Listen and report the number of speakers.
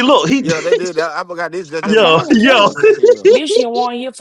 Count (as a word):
three